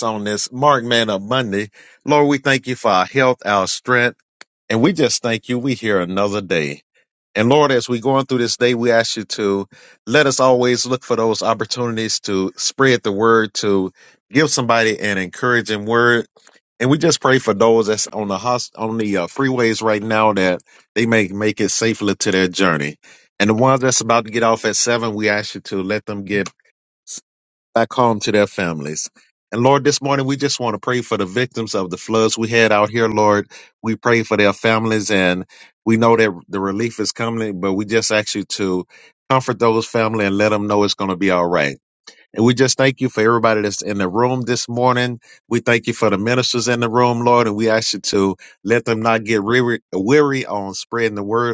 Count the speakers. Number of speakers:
1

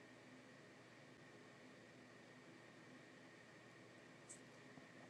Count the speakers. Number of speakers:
0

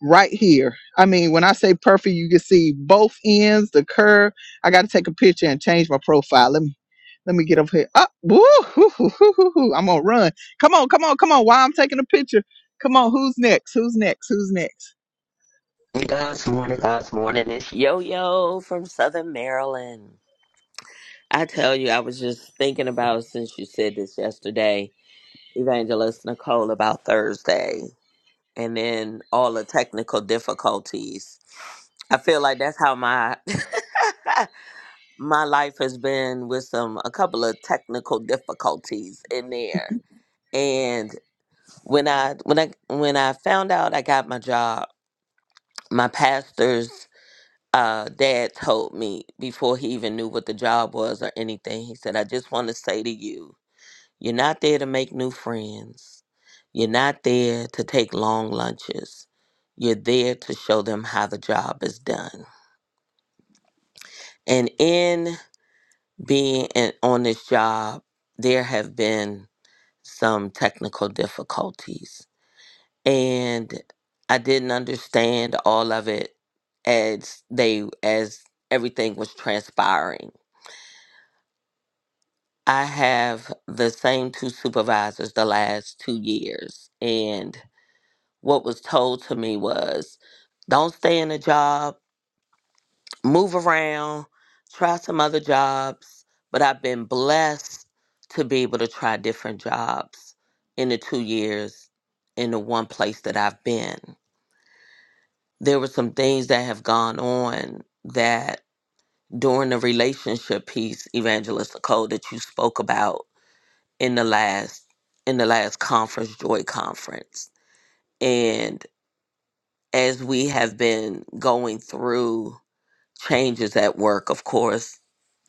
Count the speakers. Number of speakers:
2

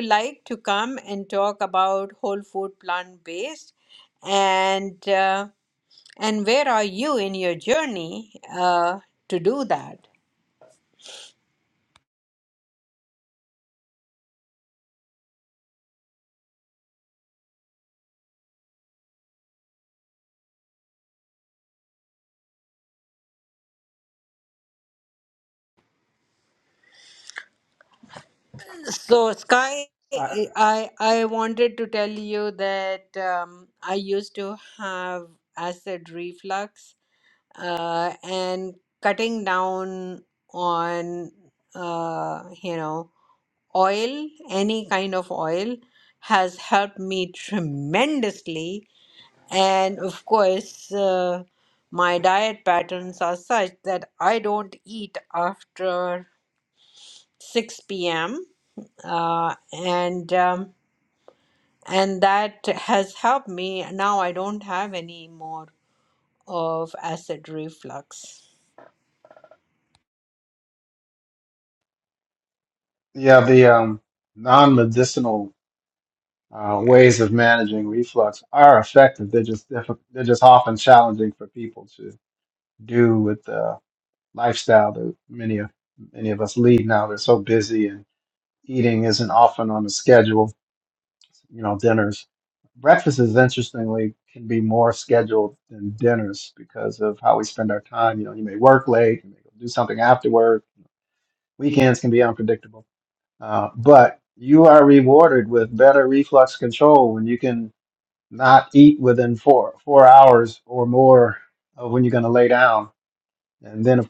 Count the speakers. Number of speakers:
2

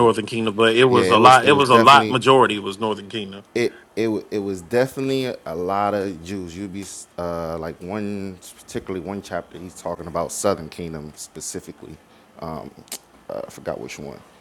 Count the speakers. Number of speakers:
2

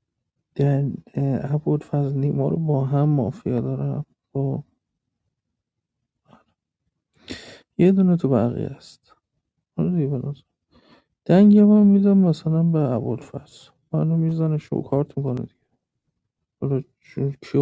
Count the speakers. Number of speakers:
1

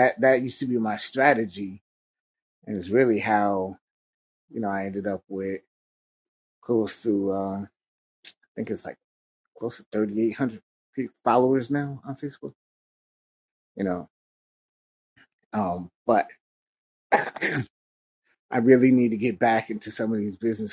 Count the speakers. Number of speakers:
1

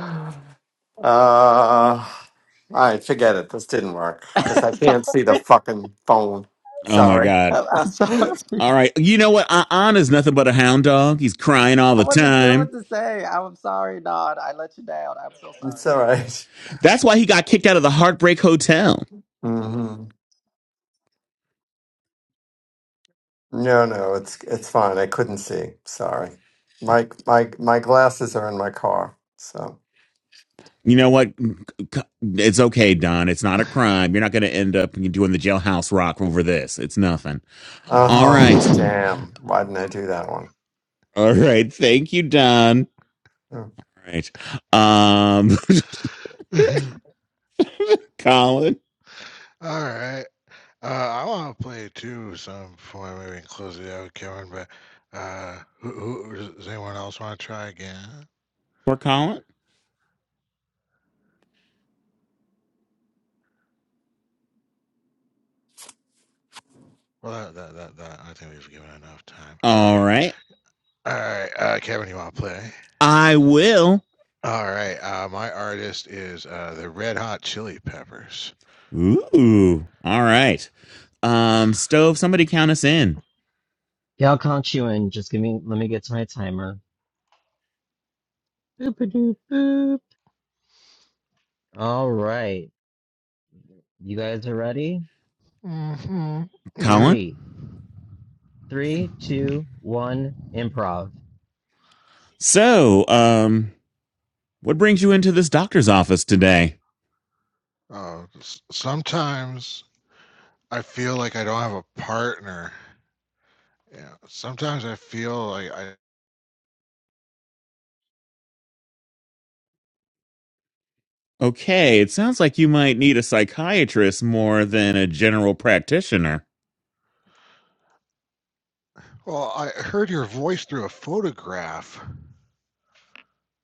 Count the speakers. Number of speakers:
5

